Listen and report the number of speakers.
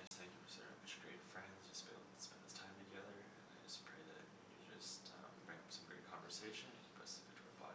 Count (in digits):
1